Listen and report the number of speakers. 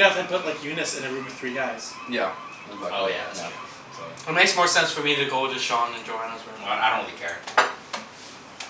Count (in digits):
4